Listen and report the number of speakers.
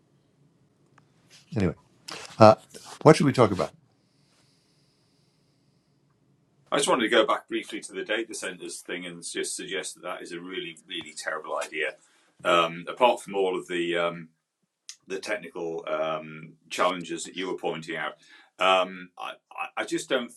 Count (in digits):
2